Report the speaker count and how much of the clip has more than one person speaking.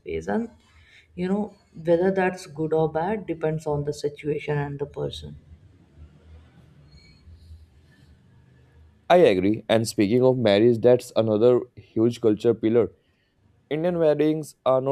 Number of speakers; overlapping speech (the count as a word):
two, no overlap